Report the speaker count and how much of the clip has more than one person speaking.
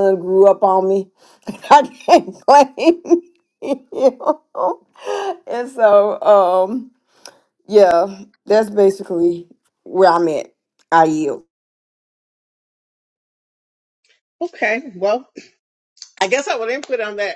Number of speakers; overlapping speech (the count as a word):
two, no overlap